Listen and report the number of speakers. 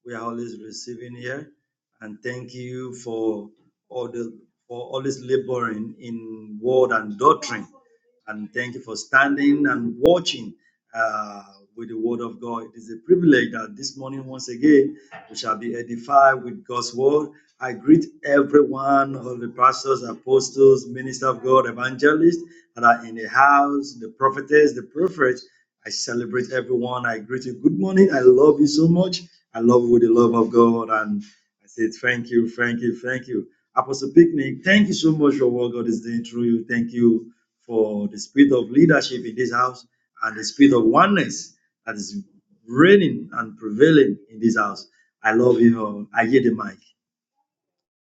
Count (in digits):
1